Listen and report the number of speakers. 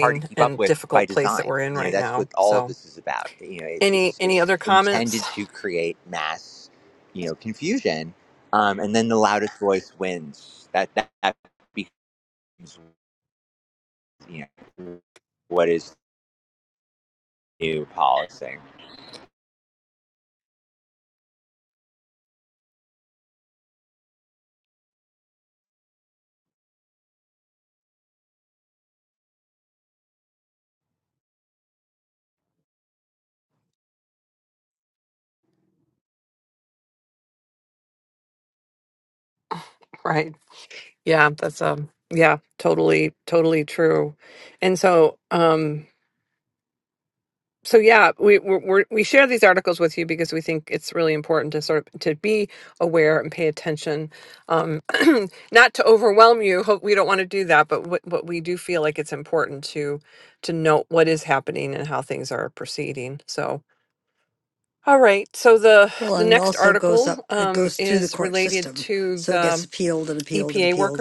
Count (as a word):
three